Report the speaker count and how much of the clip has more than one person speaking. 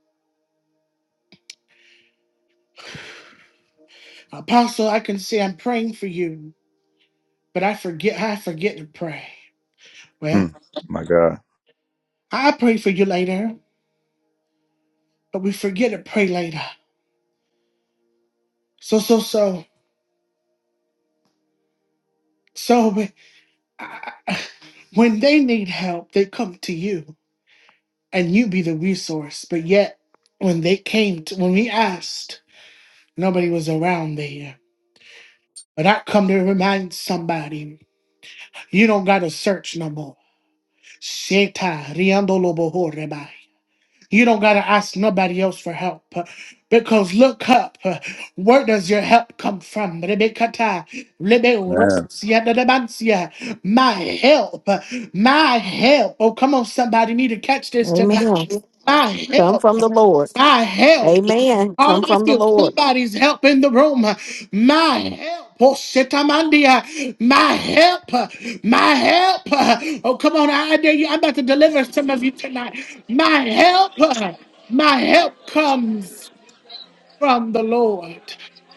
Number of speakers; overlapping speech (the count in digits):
3, about 3%